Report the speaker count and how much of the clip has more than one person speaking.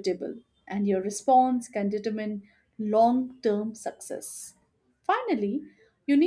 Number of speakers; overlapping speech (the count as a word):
one, no overlap